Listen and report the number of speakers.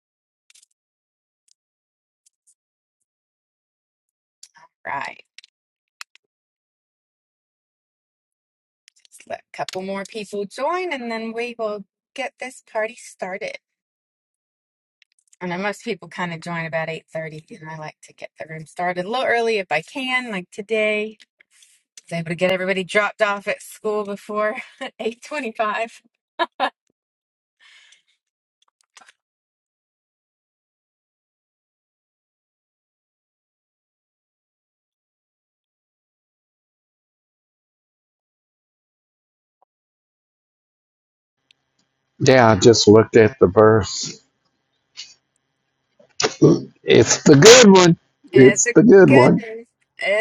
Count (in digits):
2